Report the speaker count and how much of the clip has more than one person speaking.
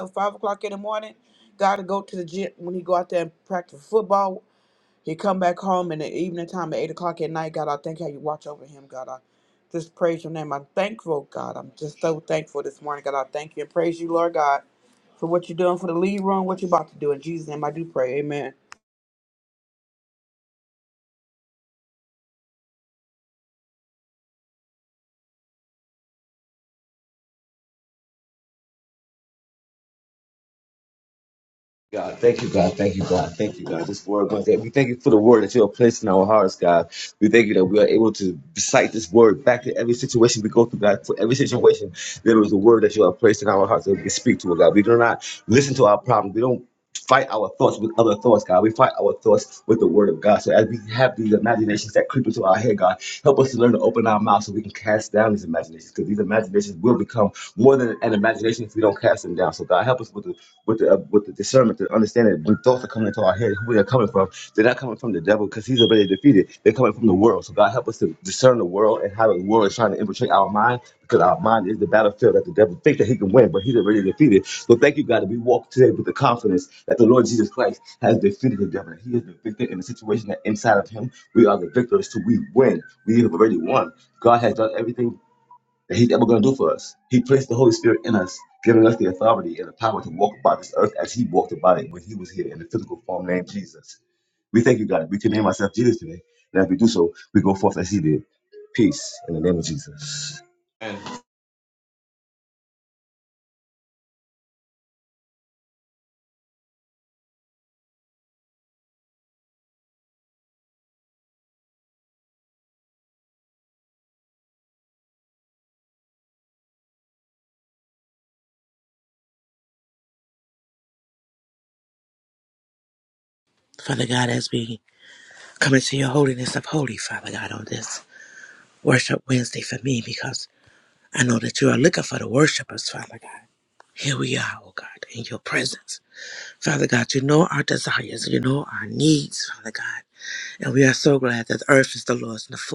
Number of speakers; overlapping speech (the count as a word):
three, no overlap